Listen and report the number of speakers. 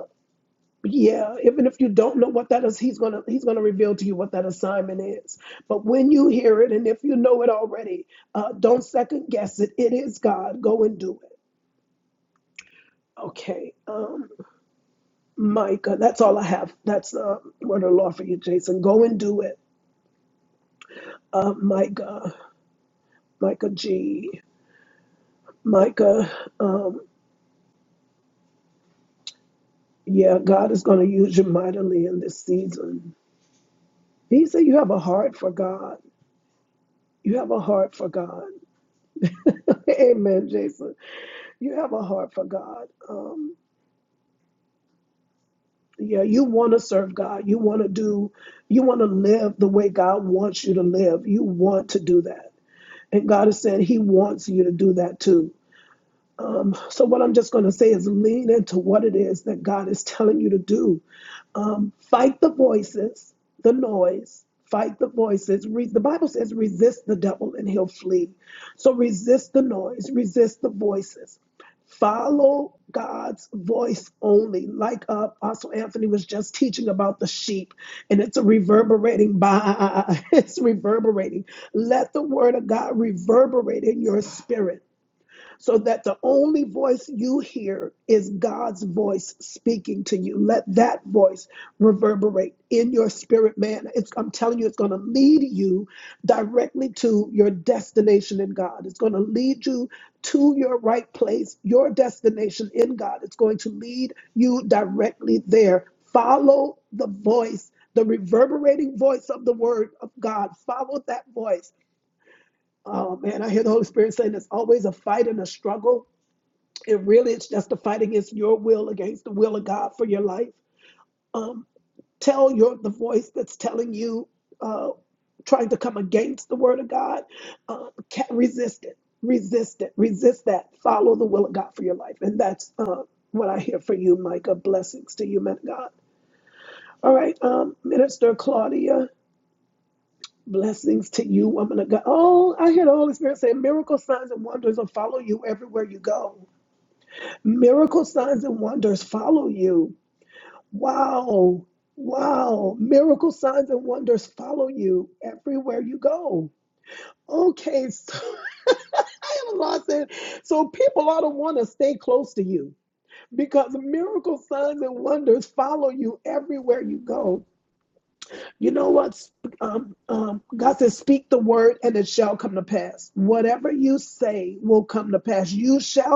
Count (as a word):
one